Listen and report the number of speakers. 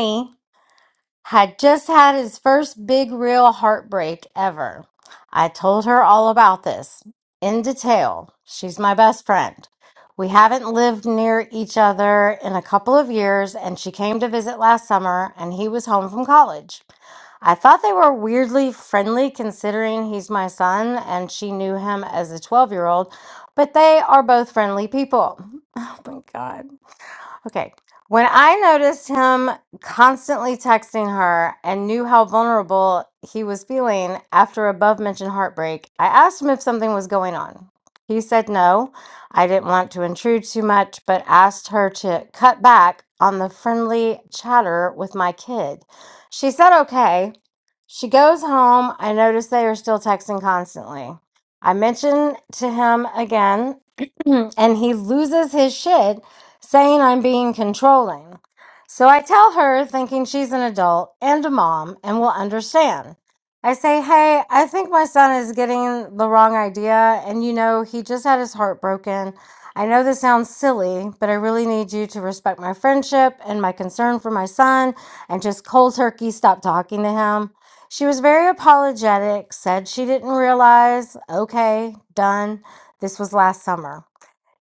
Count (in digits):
1